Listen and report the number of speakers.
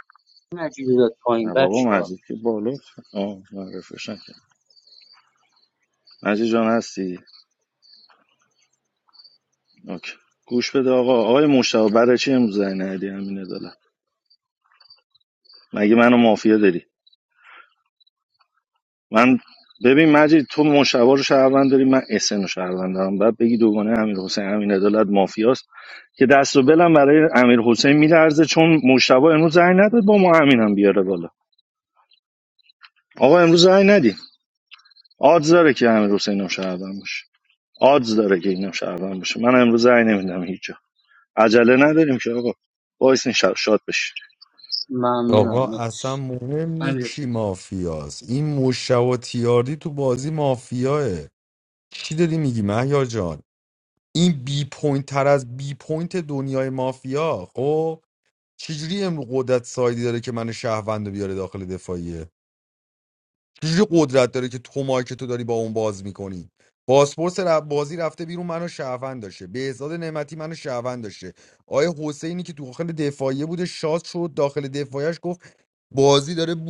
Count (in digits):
3